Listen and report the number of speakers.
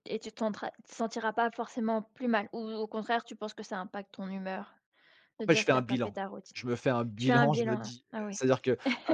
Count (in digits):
2